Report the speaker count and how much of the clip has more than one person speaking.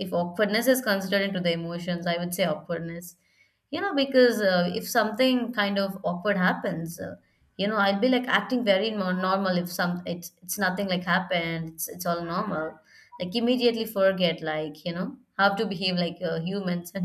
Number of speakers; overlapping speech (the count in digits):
1, no overlap